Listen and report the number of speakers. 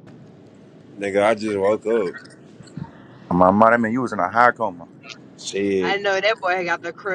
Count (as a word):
three